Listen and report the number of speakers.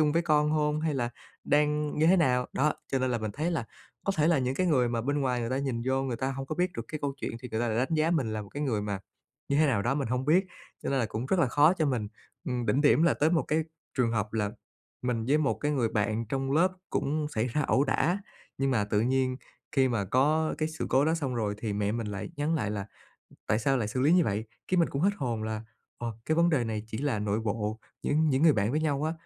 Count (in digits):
1